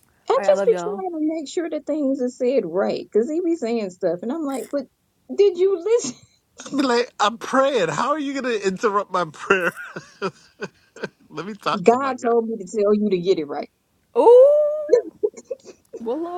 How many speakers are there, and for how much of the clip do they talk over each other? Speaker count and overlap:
three, about 7%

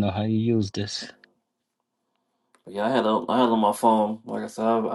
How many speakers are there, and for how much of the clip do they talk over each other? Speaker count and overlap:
two, no overlap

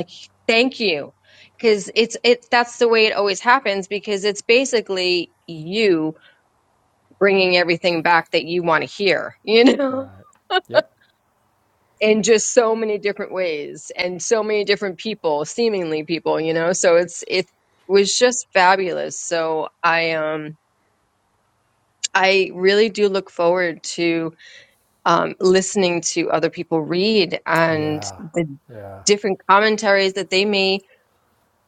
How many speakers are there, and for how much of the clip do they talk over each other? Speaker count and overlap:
two, about 2%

